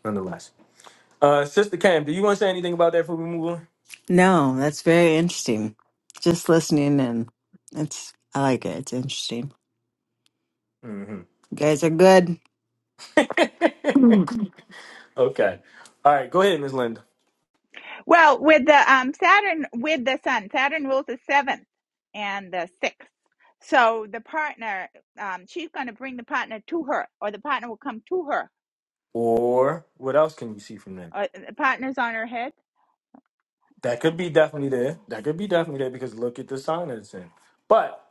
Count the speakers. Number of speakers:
3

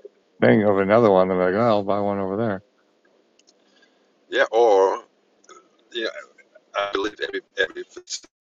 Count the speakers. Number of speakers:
2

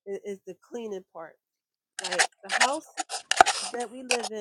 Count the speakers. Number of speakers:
1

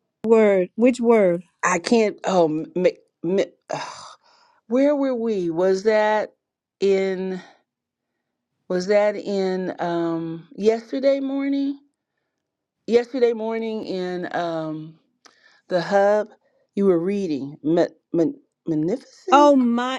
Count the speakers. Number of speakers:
2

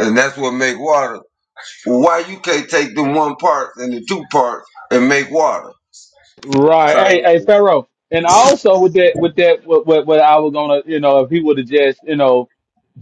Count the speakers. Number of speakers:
2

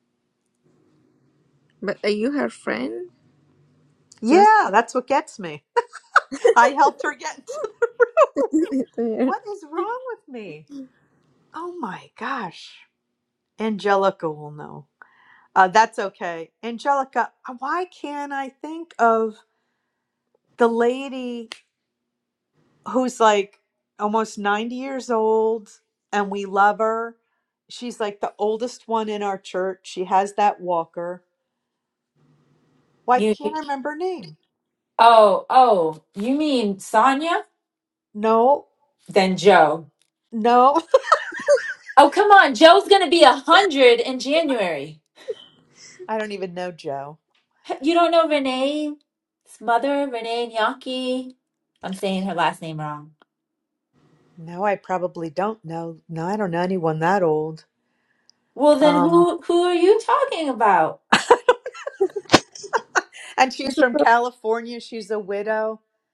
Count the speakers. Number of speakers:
3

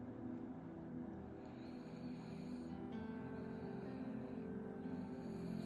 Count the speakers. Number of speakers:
0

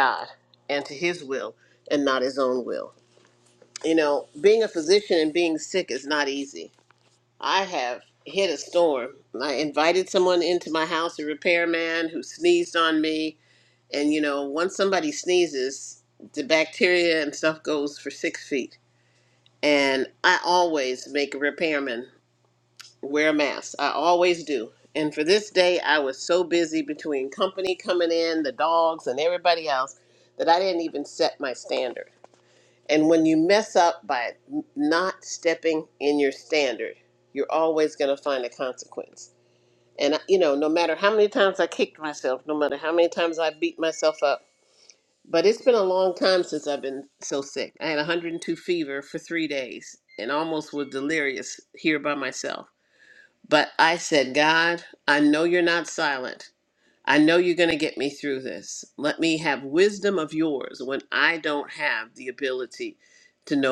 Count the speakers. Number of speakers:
1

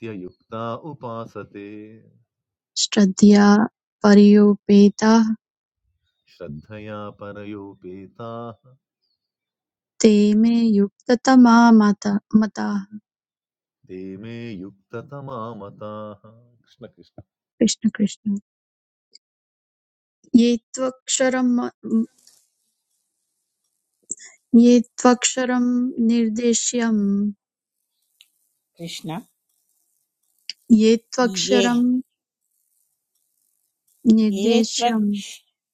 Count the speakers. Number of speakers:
3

